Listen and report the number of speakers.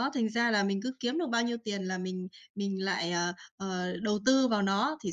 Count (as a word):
one